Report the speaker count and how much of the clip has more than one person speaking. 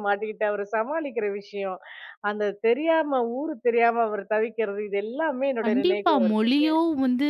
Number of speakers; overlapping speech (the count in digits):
2, about 15%